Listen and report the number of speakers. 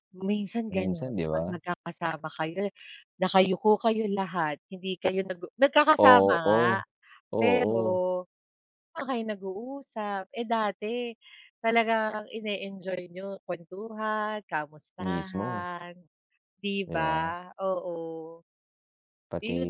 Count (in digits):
2